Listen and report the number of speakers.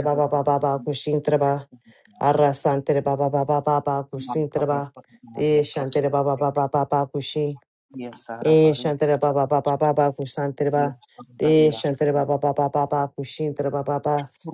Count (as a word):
two